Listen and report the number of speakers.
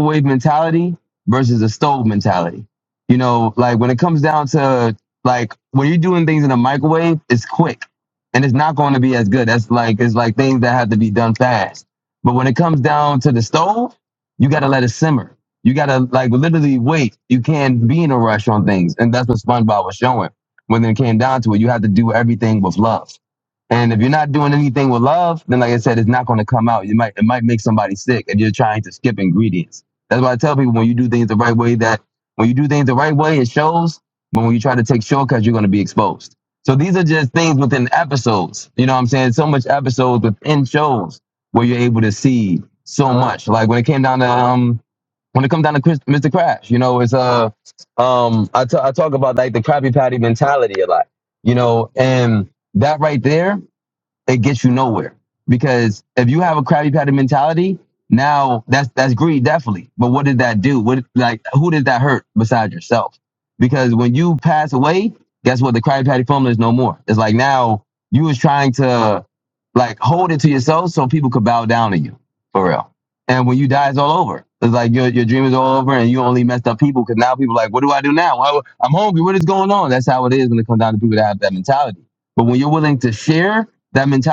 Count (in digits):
1